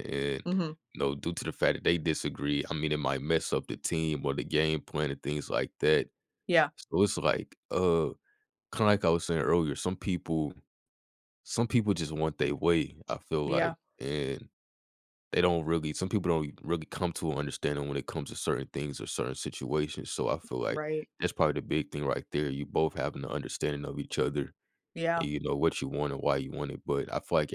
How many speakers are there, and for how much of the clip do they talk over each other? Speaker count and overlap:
two, about 2%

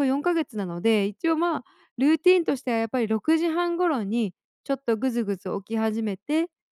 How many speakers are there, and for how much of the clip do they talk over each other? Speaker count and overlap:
one, no overlap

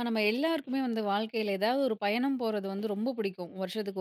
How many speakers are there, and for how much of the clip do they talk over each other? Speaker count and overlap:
one, no overlap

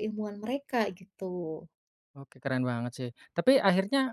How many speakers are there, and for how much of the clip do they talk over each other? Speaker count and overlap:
two, no overlap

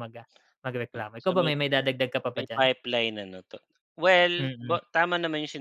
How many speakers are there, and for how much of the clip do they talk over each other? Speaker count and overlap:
two, about 16%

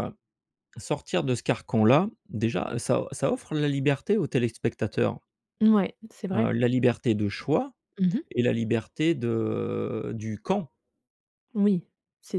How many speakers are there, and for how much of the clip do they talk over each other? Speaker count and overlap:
two, about 1%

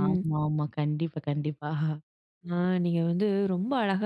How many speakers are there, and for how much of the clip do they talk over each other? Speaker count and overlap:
two, about 6%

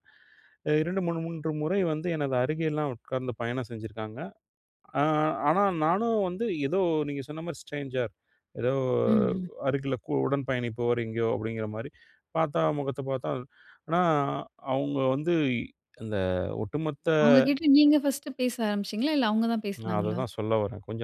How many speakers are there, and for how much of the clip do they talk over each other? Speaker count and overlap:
two, about 2%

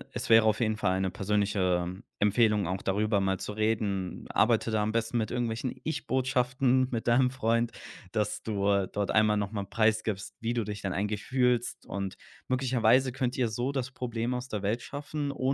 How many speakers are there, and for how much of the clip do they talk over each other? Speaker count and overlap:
one, no overlap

